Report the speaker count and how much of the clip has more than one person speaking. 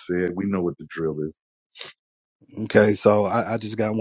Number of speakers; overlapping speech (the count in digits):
2, no overlap